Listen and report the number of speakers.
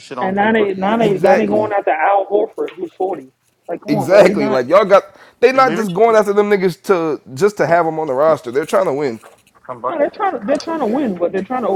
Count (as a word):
three